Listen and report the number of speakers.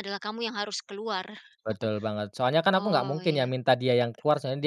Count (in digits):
2